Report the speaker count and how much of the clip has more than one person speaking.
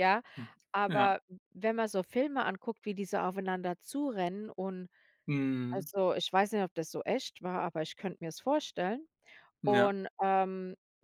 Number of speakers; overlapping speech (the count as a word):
two, about 5%